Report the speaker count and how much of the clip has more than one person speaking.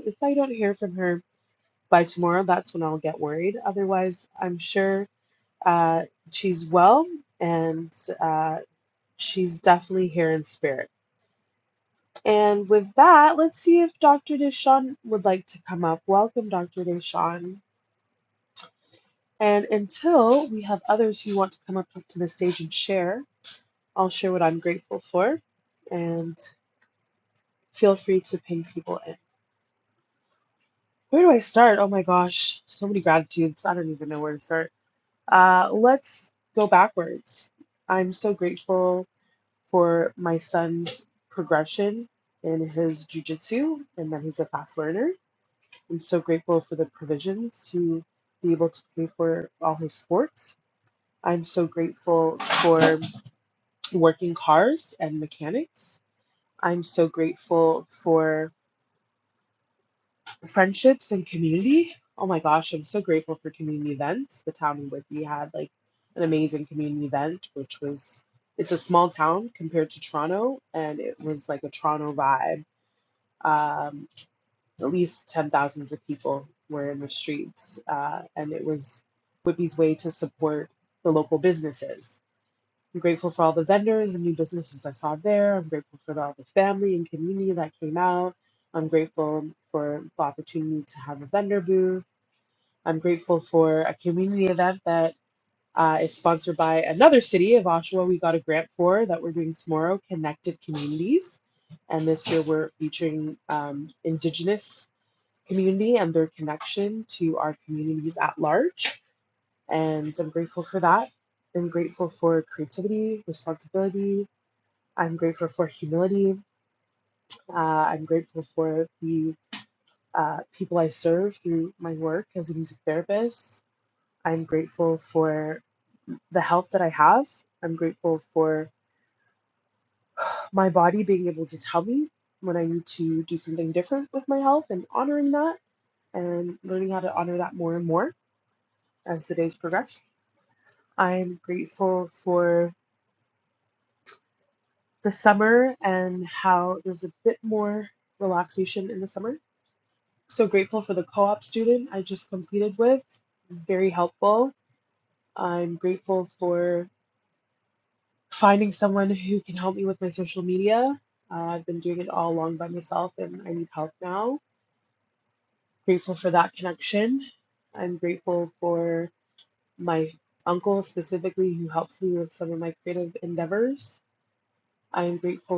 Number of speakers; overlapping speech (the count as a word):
one, no overlap